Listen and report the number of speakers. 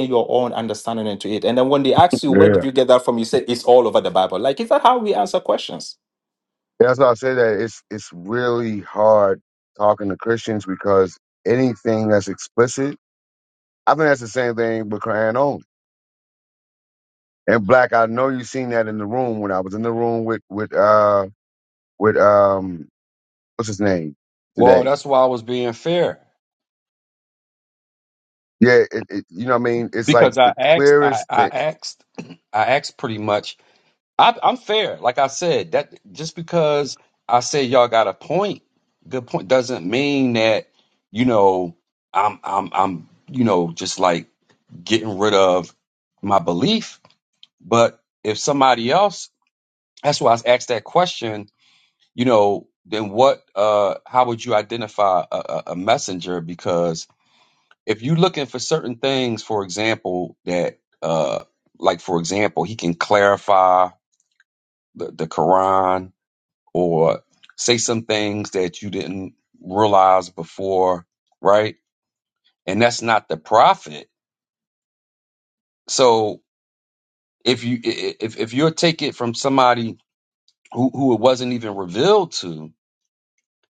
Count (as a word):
three